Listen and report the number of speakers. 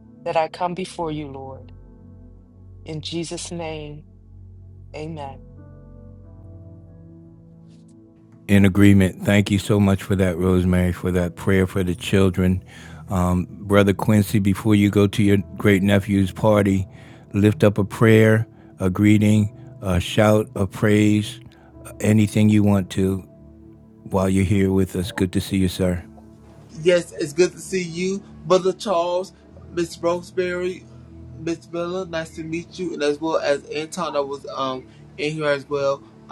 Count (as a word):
three